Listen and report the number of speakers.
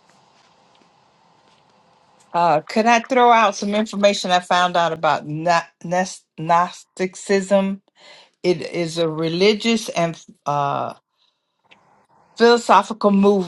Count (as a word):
one